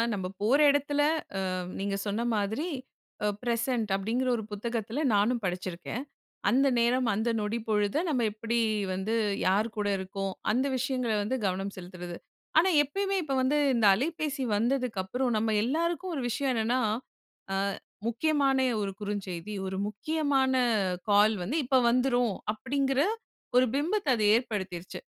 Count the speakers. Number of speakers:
1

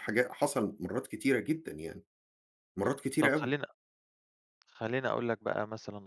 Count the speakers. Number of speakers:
2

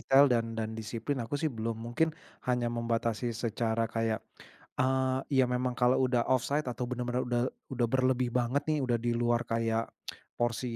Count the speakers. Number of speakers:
1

